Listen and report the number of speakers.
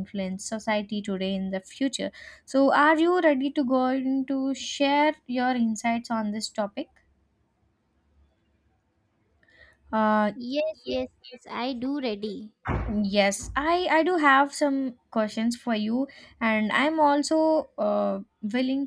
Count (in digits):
2